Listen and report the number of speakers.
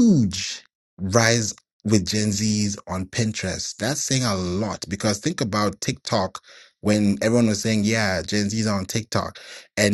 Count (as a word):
one